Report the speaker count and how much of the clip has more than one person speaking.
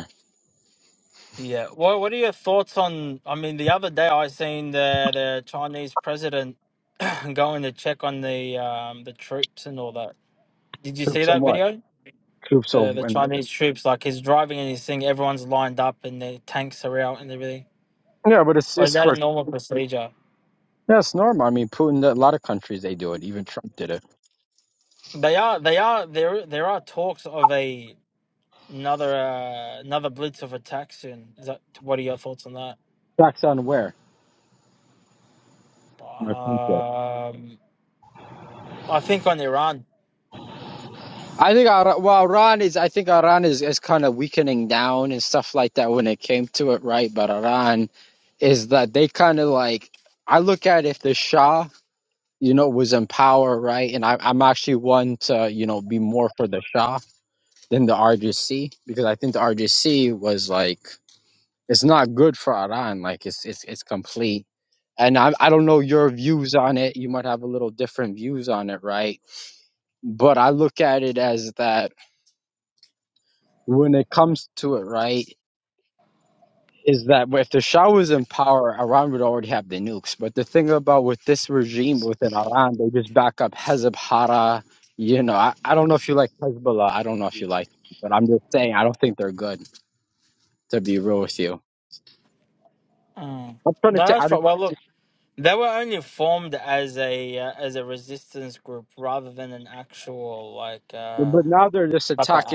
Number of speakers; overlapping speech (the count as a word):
two, about 3%